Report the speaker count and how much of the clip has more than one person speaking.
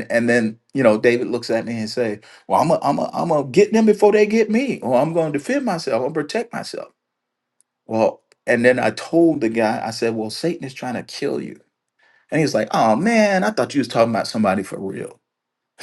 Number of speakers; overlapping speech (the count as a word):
one, no overlap